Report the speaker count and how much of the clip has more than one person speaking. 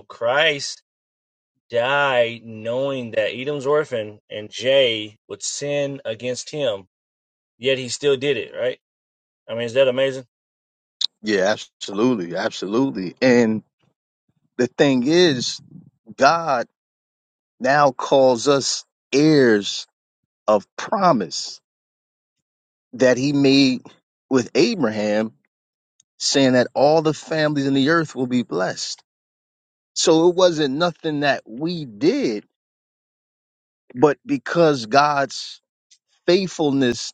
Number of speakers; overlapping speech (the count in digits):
2, no overlap